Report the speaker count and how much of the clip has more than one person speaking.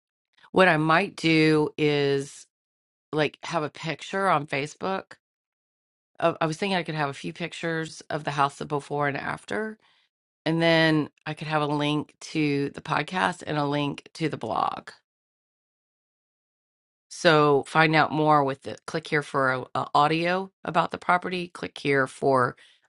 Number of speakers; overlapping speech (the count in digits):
1, no overlap